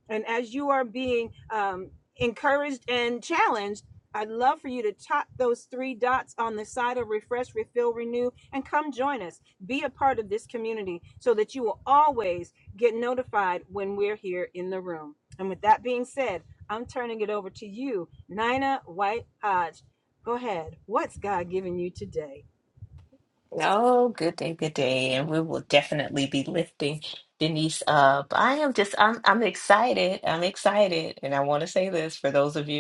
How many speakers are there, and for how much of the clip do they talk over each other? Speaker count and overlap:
2, no overlap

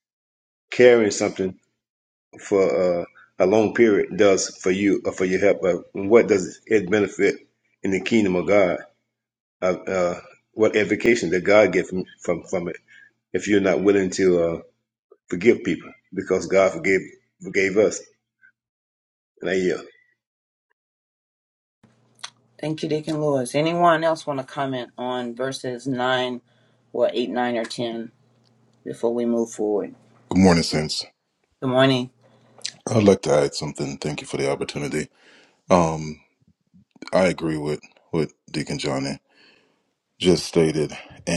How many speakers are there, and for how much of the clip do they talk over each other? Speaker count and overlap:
3, no overlap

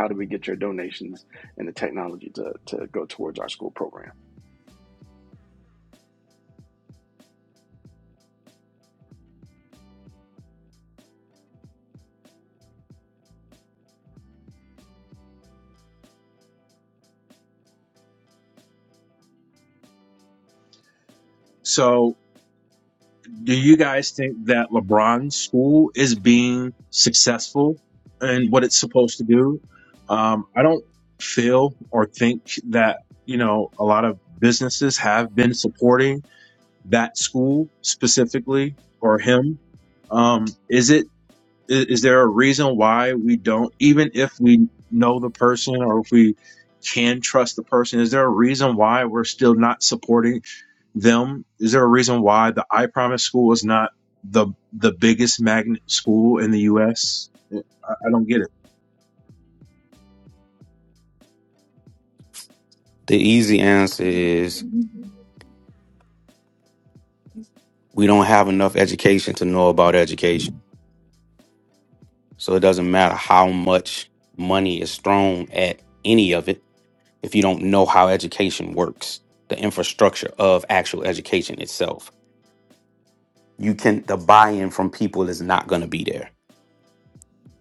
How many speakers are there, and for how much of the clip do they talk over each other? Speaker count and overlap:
3, no overlap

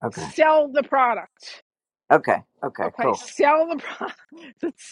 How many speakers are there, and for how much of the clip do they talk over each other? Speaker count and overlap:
2, about 12%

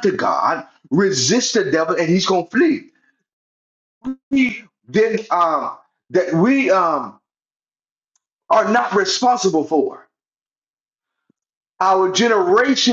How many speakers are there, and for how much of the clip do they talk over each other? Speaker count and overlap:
1, no overlap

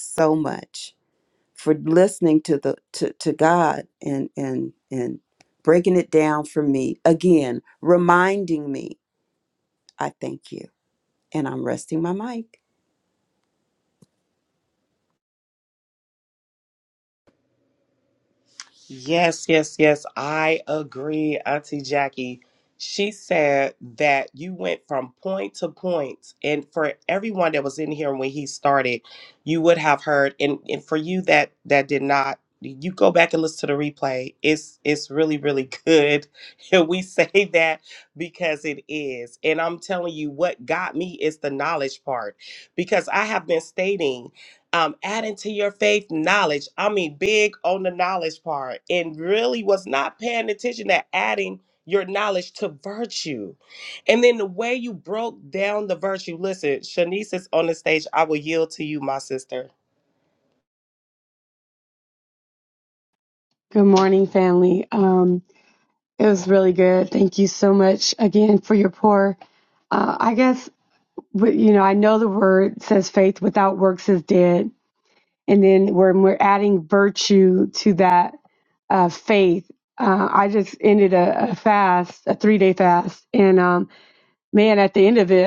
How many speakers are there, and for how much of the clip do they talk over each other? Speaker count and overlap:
3, no overlap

